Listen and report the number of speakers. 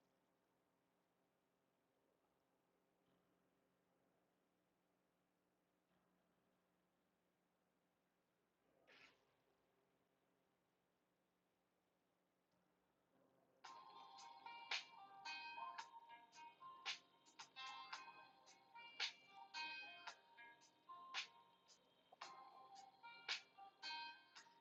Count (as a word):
zero